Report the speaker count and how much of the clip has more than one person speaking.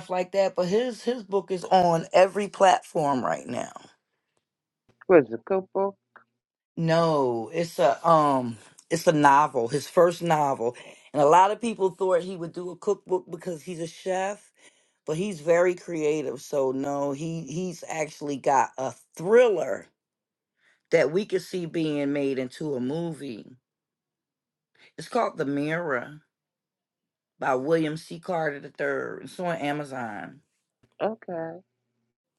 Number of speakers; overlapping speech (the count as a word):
two, no overlap